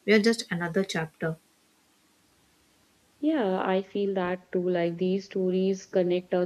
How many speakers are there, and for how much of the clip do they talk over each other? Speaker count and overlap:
2, no overlap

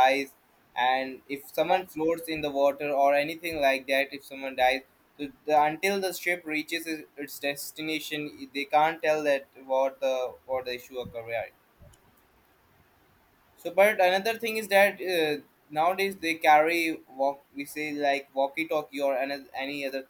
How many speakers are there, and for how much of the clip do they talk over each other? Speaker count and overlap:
1, no overlap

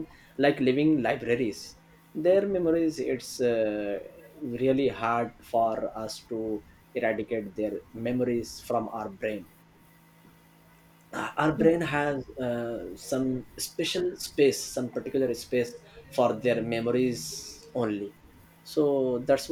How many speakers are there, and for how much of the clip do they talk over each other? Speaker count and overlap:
1, no overlap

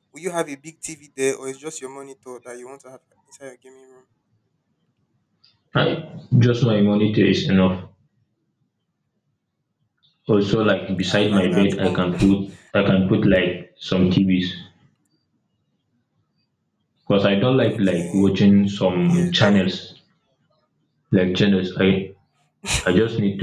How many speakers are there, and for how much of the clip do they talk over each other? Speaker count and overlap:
2, about 10%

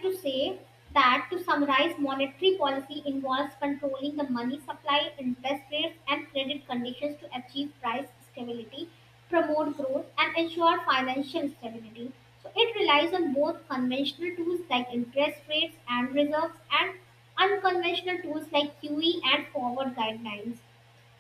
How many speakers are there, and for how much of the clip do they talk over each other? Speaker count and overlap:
1, no overlap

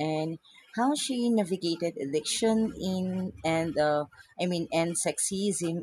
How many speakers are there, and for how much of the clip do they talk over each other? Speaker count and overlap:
1, no overlap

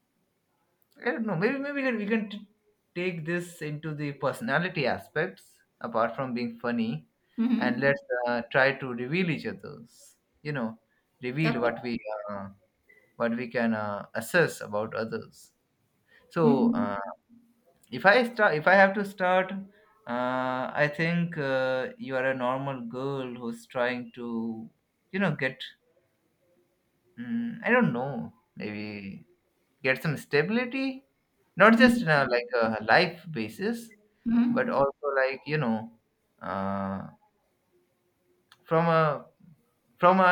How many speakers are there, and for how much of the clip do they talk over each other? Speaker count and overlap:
2, about 6%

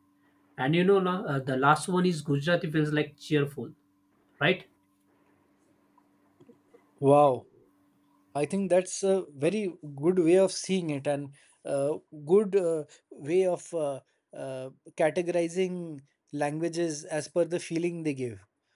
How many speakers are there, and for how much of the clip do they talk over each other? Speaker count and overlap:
2, no overlap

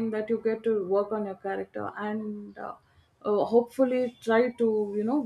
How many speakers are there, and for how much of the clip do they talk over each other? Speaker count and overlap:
1, no overlap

